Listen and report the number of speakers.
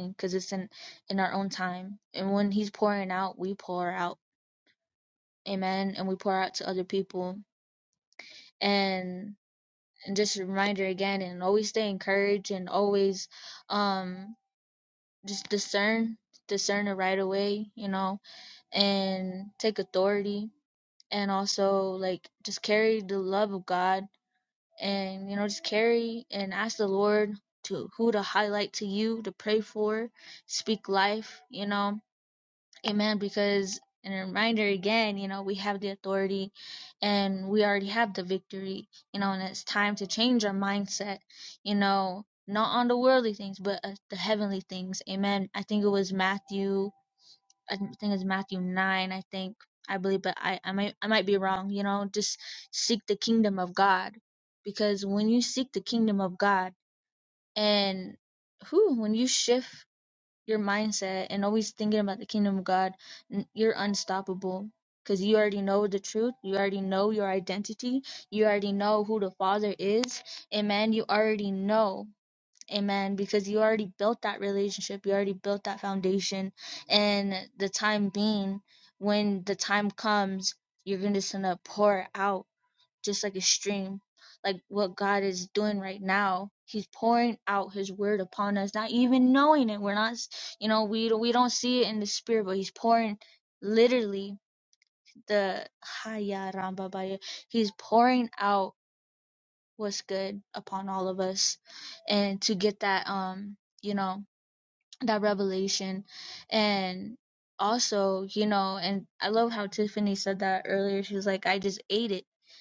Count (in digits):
1